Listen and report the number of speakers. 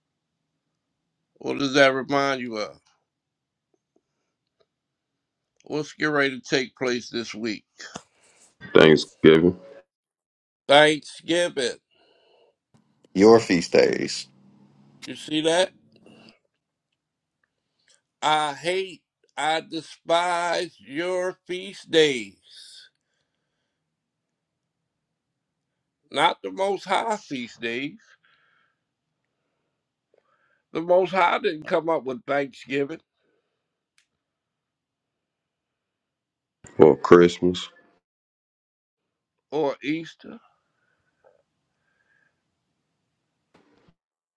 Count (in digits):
3